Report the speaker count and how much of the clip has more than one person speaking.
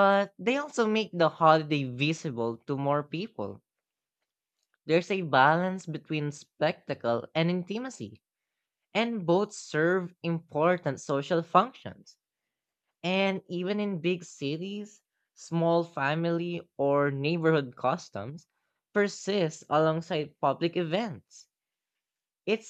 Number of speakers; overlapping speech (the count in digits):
1, no overlap